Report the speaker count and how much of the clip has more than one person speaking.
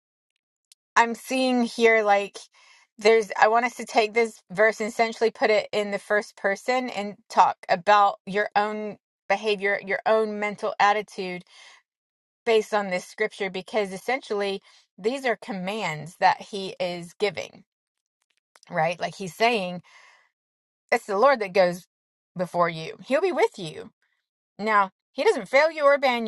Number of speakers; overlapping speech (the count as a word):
one, no overlap